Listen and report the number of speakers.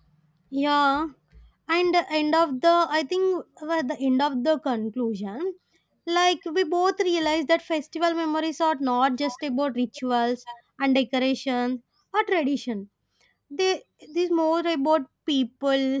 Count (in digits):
1